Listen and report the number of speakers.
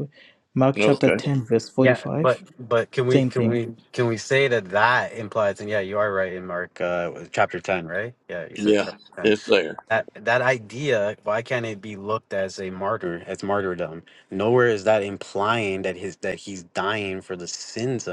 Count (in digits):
3